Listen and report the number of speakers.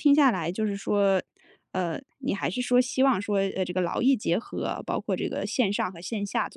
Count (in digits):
1